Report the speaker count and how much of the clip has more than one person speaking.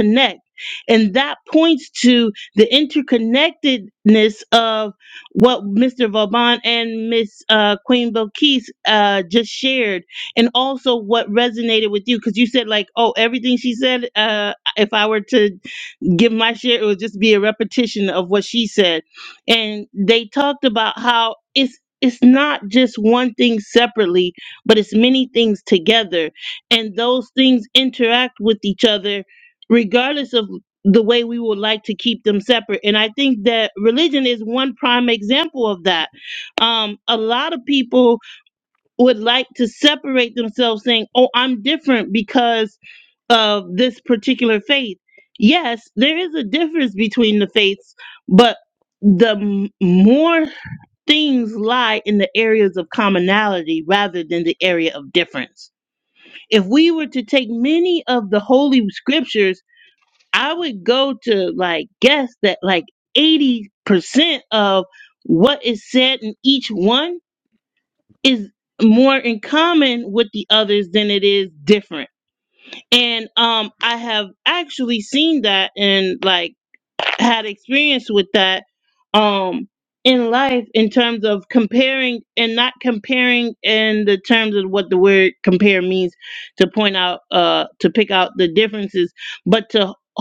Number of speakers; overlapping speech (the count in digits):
1, no overlap